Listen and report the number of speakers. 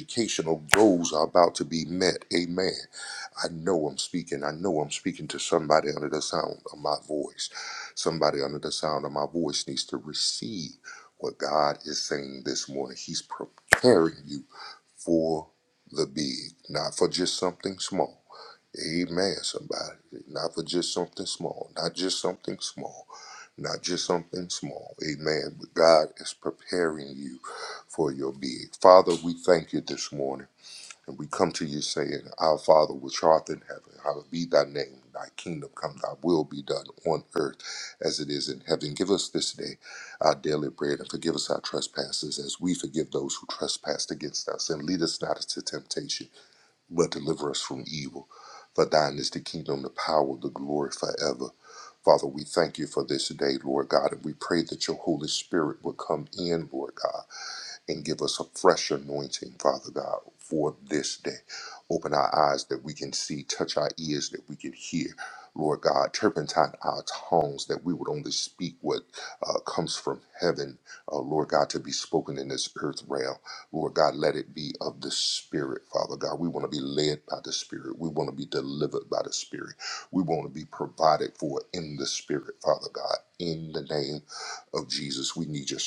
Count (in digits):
1